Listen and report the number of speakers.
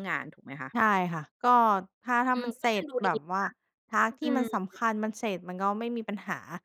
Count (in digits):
2